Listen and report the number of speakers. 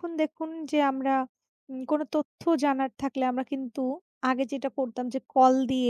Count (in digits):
1